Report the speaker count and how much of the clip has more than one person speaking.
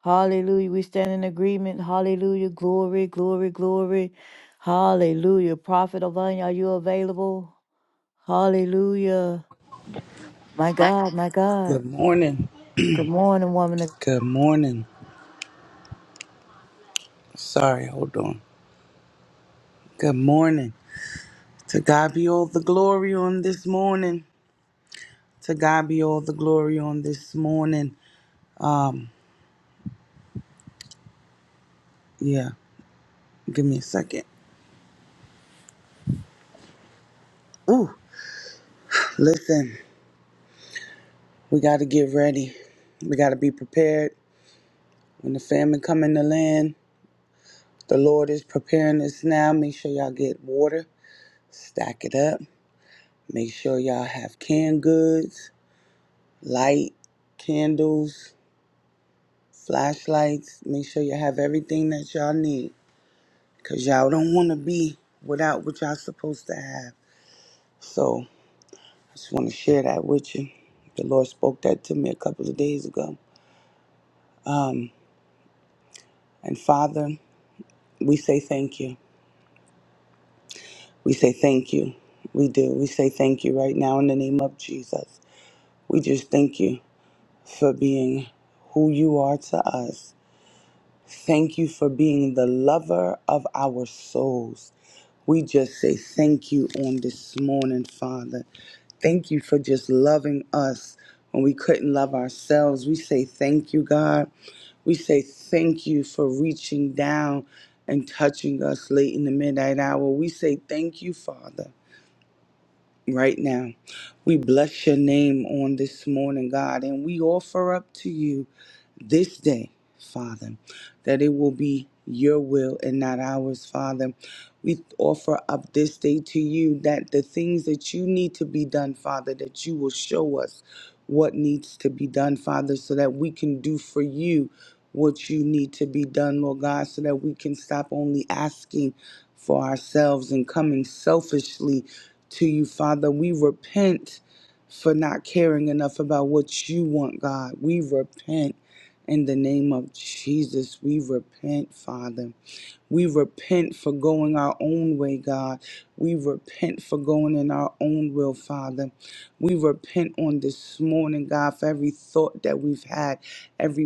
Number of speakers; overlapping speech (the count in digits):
2, under 1%